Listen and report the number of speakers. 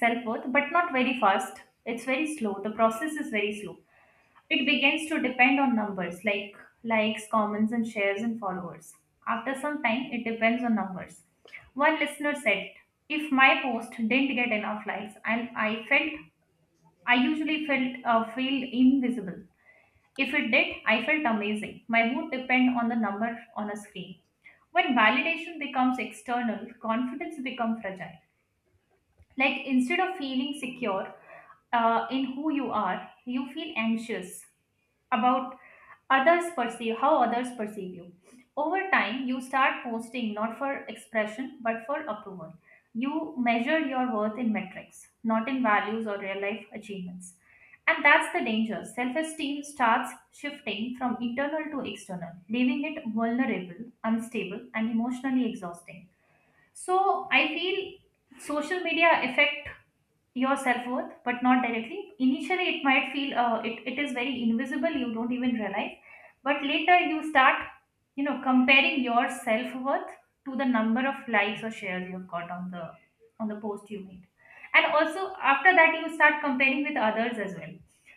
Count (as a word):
one